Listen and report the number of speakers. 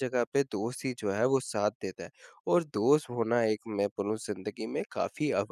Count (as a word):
one